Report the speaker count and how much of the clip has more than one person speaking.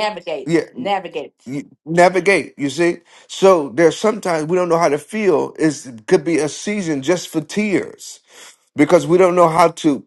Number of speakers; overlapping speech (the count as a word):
two, about 2%